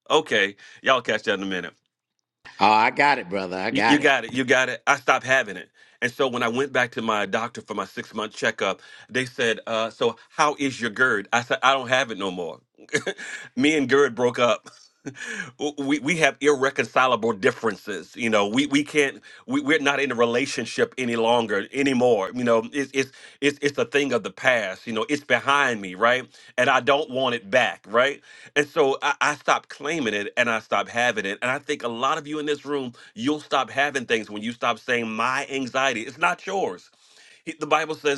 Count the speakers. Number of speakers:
two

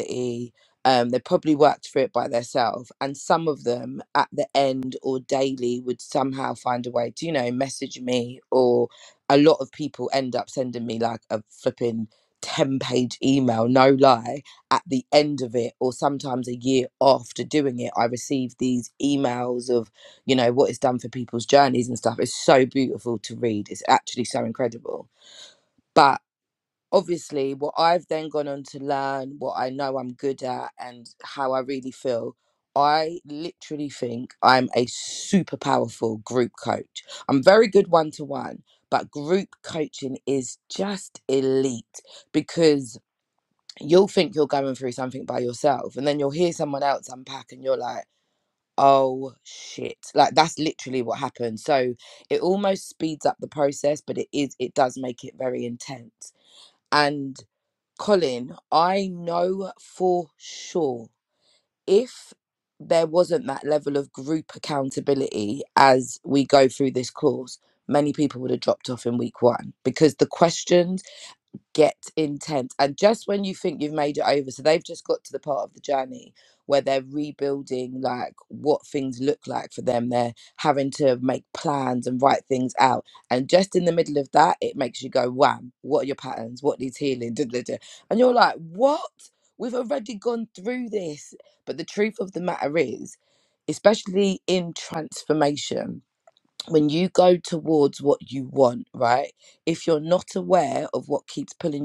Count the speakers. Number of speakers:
one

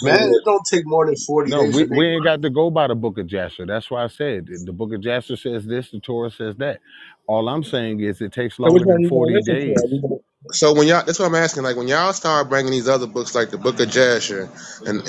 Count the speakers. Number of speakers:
three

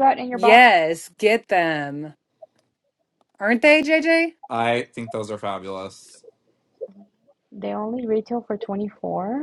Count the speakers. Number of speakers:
three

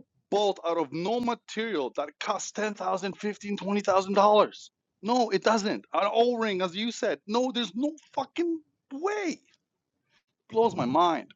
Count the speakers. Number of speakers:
one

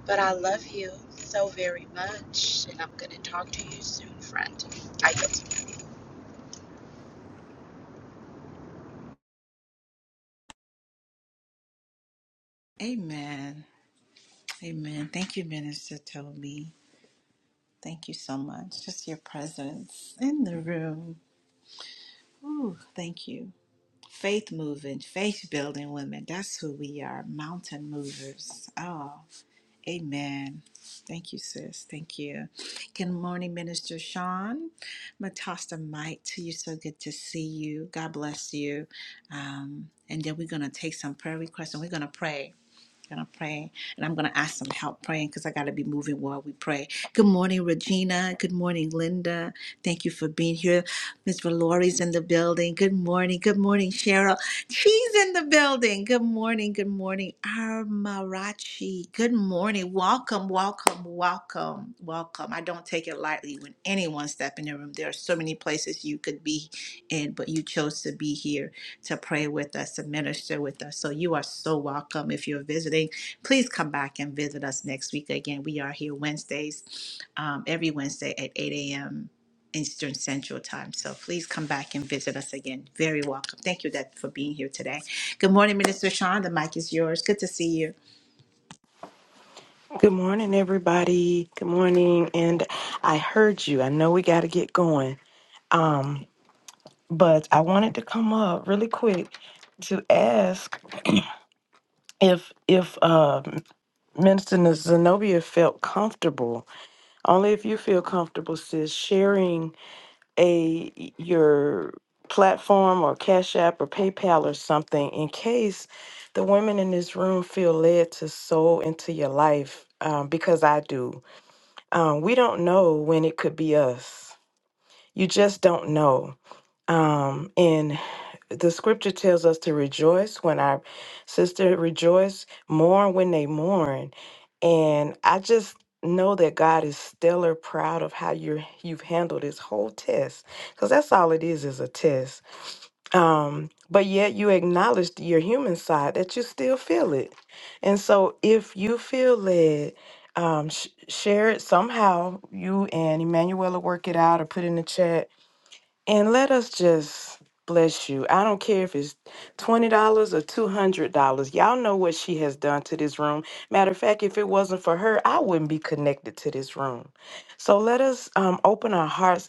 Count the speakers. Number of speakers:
three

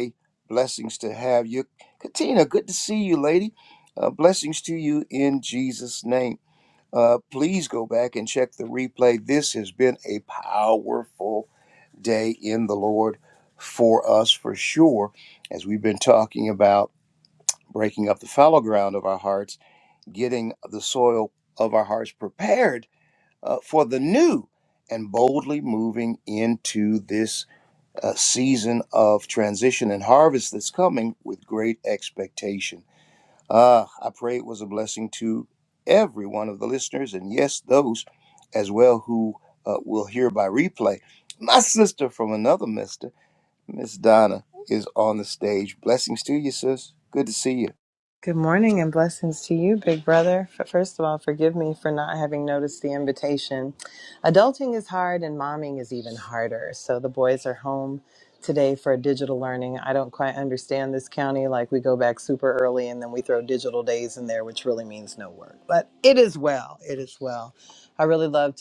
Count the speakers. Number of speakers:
two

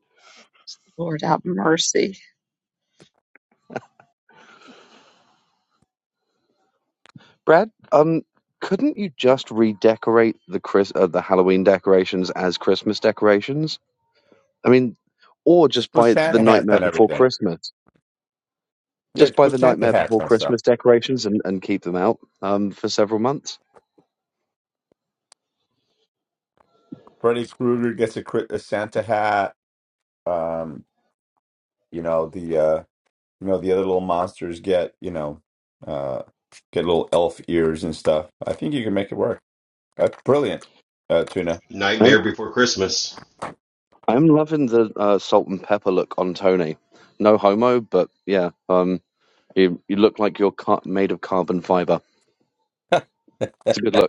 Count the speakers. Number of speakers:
four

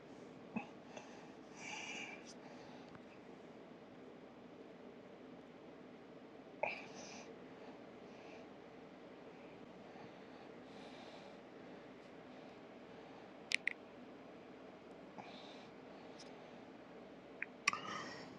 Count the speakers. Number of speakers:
zero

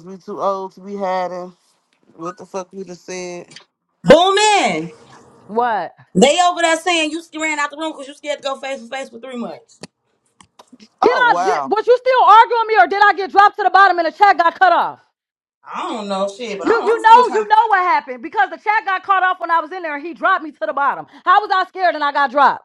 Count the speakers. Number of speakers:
three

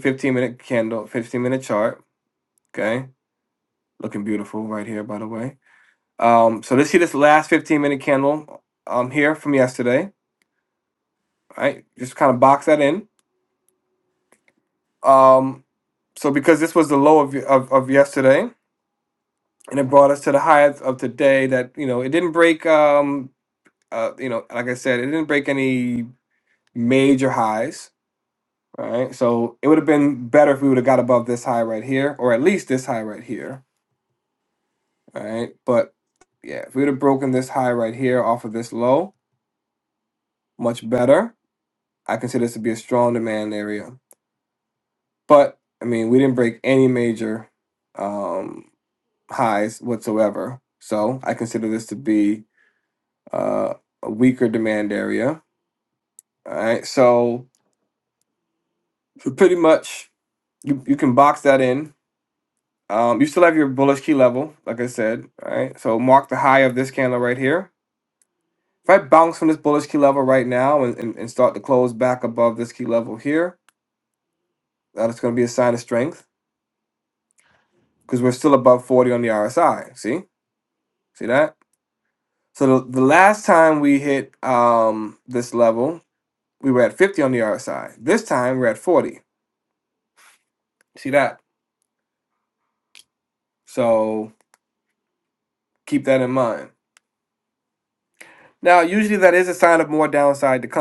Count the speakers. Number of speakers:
one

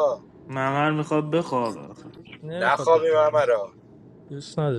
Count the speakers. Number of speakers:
three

